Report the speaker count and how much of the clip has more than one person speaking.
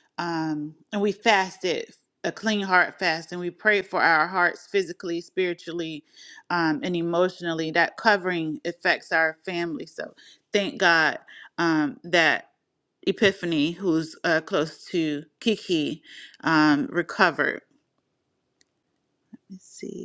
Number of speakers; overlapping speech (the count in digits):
1, no overlap